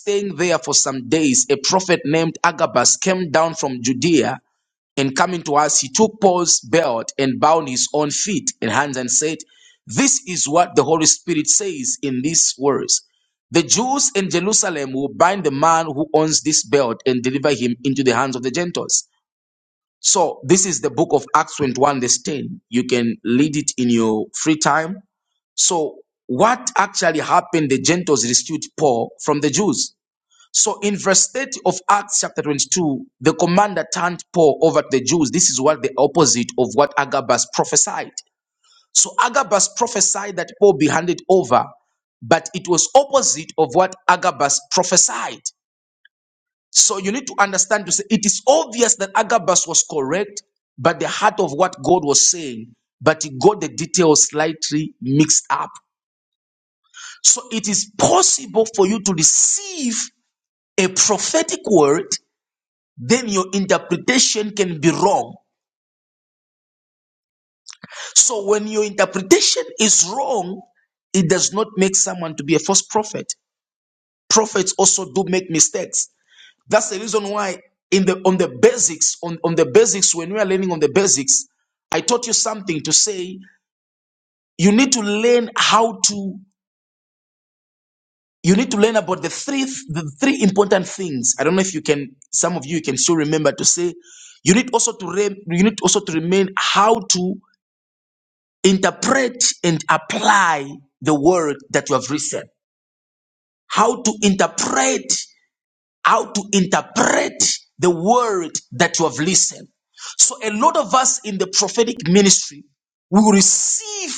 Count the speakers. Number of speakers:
1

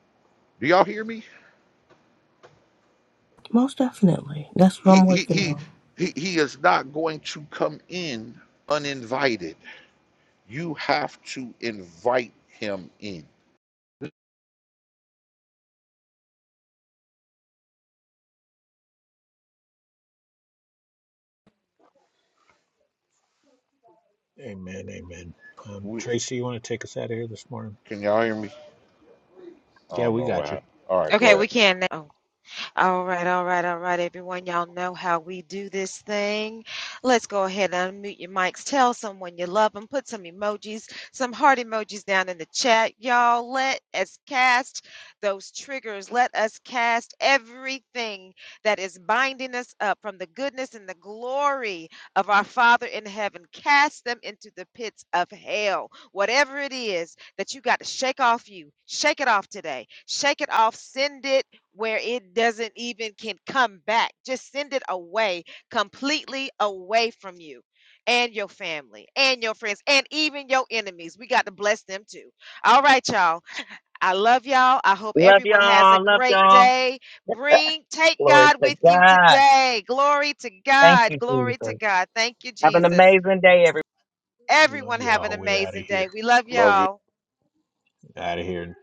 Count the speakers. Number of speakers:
5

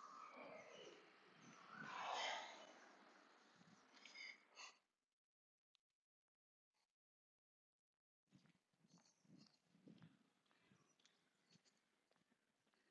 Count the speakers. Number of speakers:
0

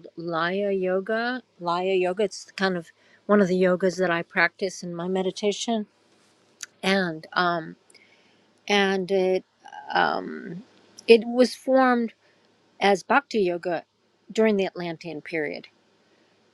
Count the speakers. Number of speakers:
1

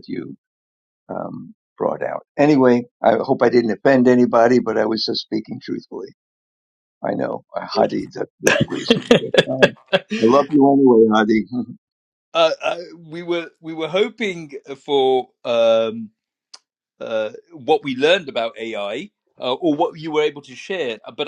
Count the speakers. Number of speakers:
2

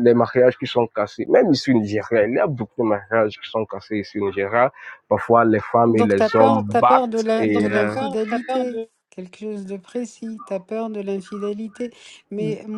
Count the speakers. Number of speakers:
2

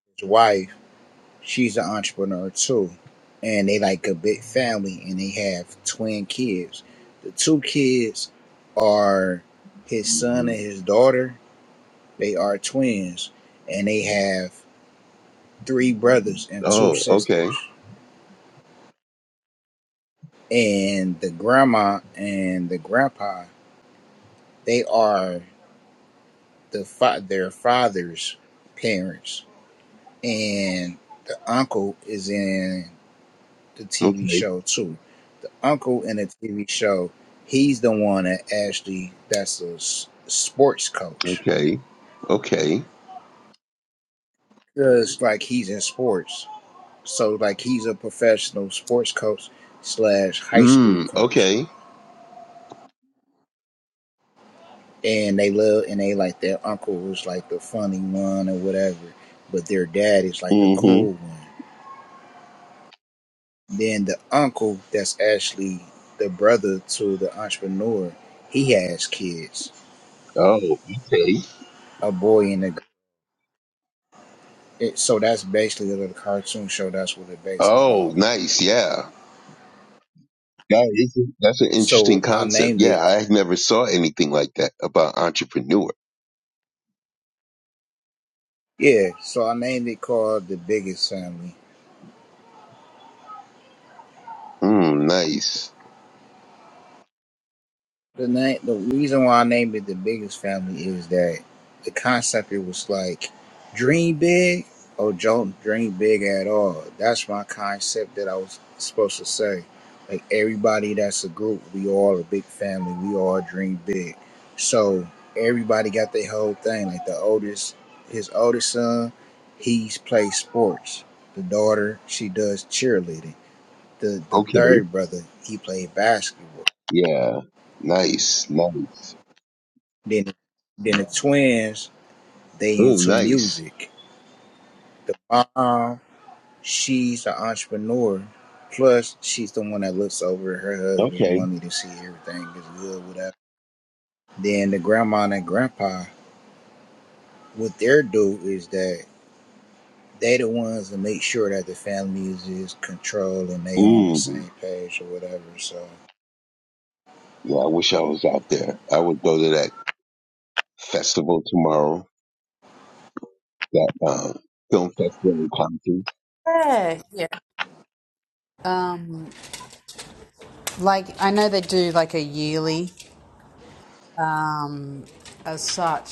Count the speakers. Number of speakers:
3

